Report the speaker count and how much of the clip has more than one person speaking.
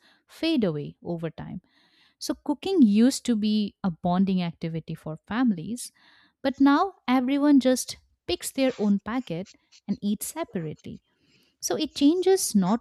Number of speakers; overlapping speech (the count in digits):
1, no overlap